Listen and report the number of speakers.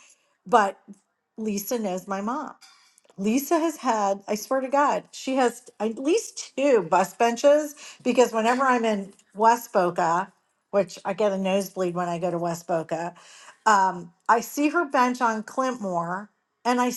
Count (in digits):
1